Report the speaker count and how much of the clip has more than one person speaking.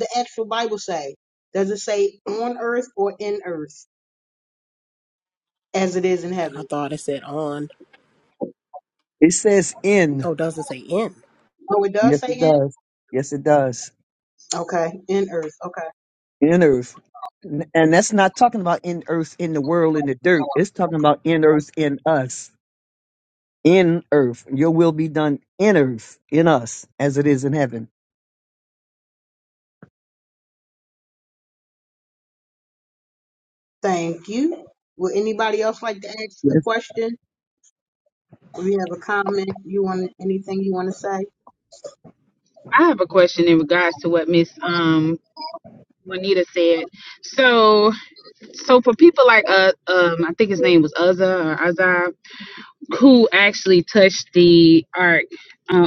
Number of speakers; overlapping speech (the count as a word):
four, about 2%